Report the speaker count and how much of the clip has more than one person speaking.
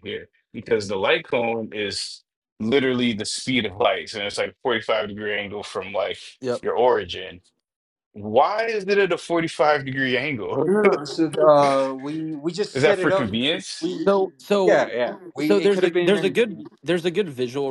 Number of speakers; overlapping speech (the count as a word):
three, about 12%